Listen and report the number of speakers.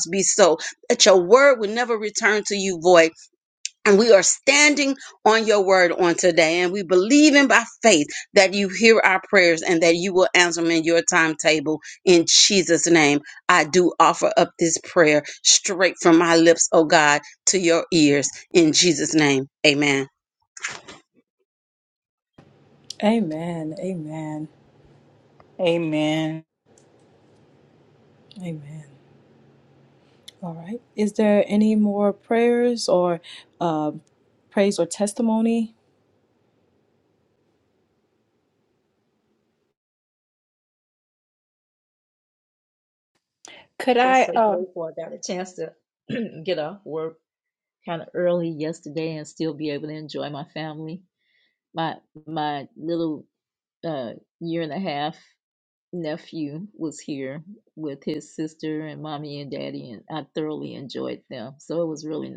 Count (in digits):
4